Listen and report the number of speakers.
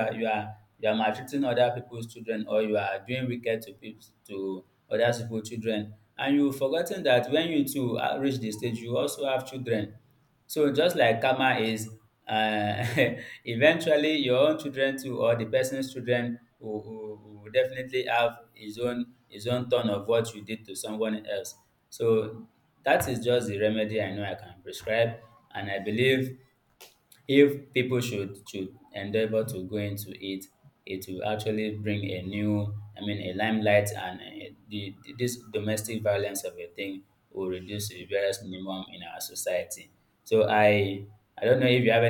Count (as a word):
one